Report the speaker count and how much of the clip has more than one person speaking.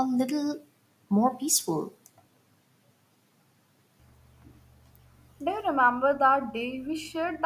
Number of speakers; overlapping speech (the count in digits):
2, no overlap